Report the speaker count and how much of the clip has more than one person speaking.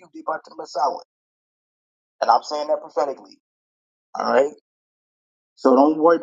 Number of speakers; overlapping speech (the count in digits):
1, no overlap